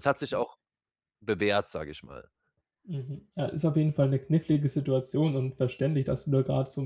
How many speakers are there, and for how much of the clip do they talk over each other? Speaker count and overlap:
two, under 1%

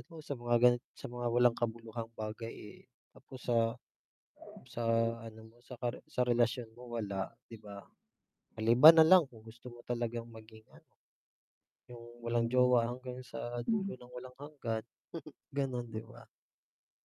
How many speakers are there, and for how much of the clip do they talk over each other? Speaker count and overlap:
one, no overlap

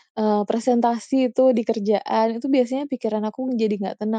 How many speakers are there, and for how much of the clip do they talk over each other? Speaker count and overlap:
one, no overlap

